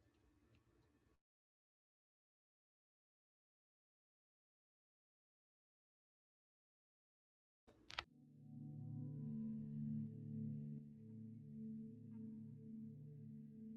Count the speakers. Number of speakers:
0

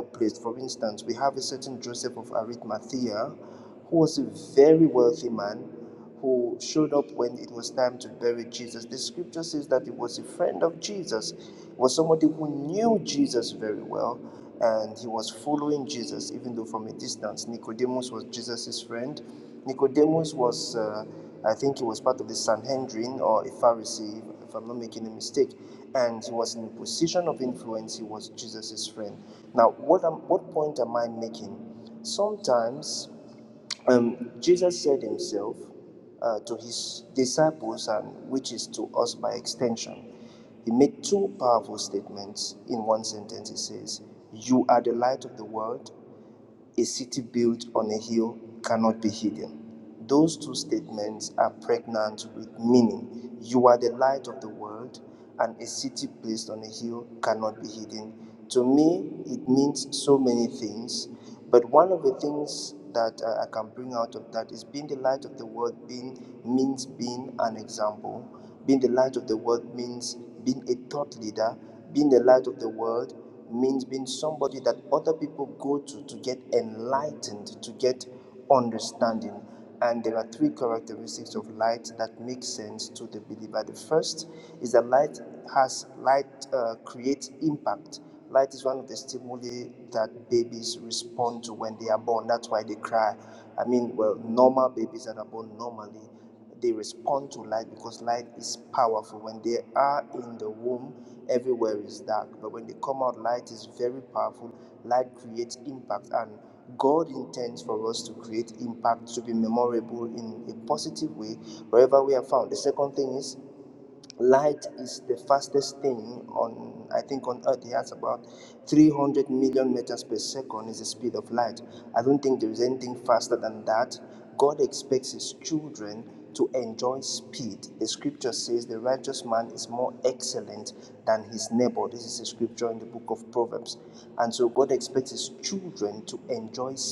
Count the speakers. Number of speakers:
1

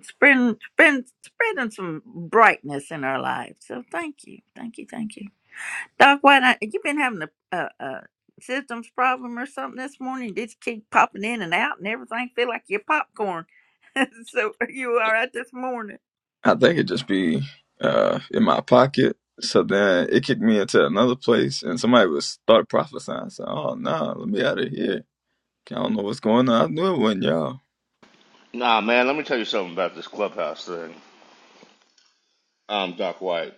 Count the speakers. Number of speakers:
3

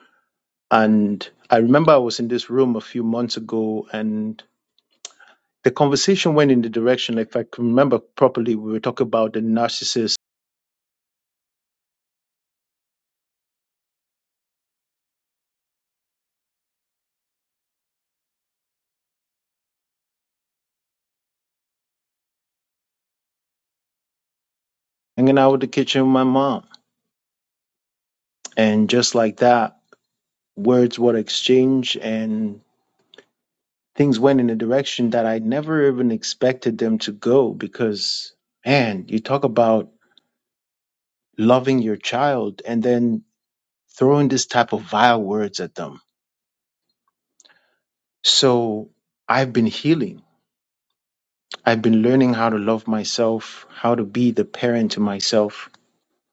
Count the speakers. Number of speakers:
1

